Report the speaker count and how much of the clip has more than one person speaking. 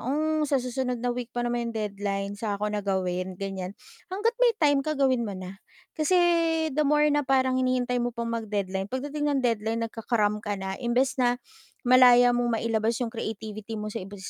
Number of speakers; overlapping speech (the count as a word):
one, no overlap